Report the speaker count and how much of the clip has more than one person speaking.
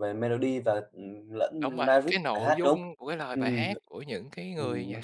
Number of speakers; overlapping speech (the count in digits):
2, about 41%